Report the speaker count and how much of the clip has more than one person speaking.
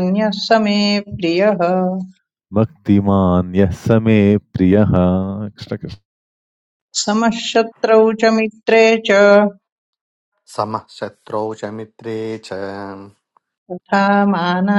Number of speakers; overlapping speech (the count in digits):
3, no overlap